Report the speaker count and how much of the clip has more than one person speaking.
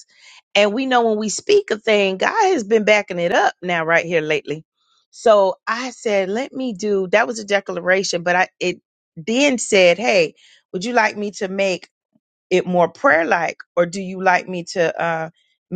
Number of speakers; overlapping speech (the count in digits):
1, no overlap